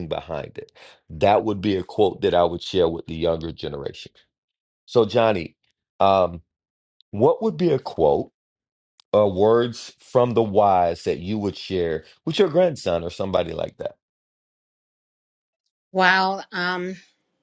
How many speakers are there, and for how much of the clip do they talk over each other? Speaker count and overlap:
2, no overlap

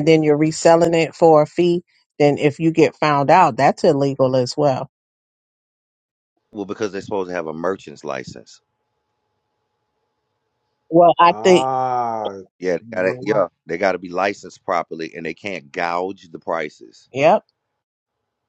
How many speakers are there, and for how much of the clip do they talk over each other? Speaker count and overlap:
3, about 5%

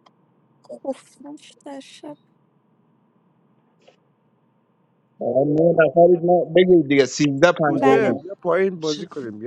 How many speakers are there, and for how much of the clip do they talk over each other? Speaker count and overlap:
3, about 8%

